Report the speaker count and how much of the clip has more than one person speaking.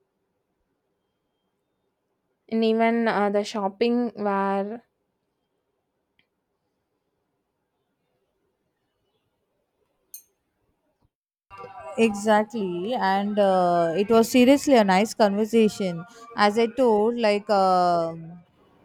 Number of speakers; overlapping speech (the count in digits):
2, no overlap